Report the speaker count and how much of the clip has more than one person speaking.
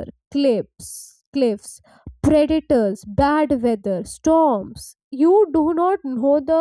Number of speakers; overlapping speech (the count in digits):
1, no overlap